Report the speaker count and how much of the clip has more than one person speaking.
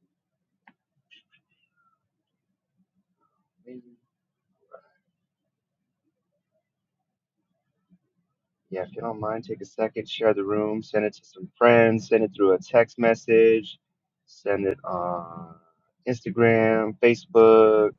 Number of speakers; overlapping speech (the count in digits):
1, no overlap